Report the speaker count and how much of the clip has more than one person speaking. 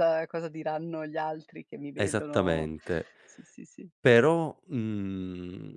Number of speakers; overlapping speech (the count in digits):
2, about 12%